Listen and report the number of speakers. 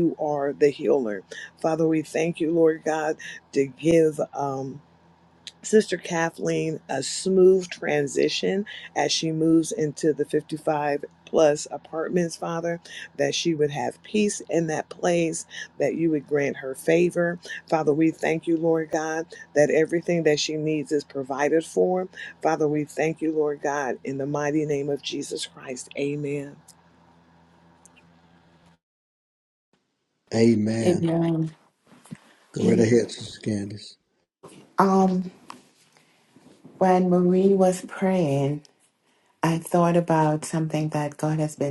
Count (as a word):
three